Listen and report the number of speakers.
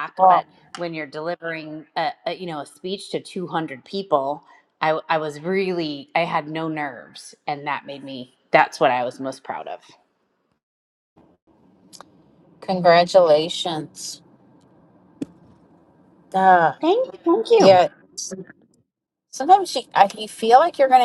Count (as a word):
two